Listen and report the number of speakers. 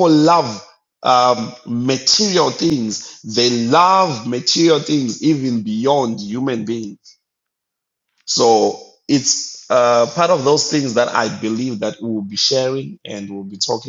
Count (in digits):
1